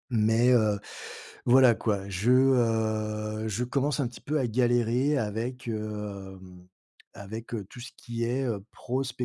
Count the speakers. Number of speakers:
1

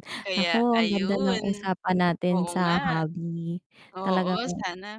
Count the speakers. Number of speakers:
2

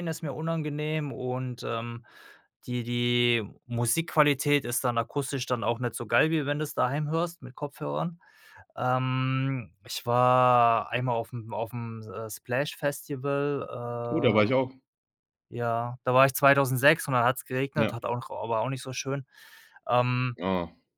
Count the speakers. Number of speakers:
2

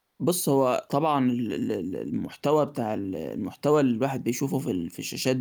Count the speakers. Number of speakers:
1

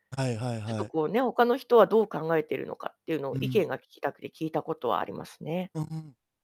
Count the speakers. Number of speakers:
2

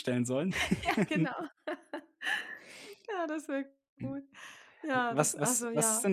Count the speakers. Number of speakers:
2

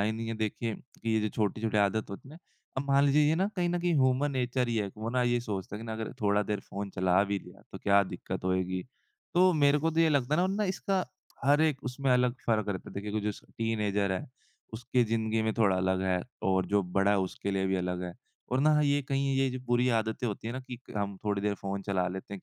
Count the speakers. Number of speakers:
1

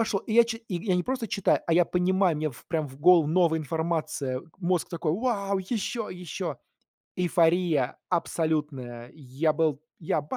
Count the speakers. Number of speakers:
1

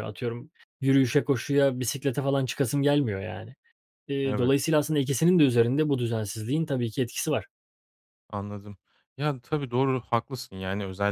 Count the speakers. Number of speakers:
2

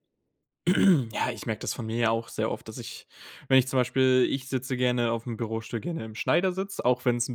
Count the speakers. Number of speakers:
1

